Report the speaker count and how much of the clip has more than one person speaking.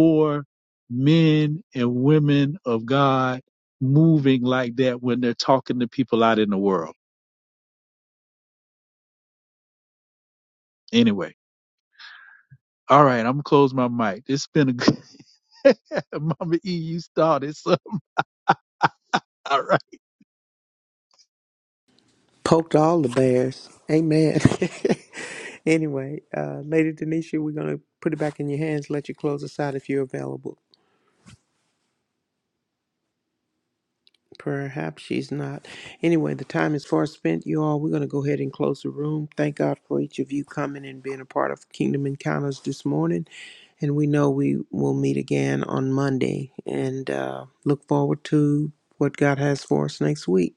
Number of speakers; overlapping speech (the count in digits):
2, no overlap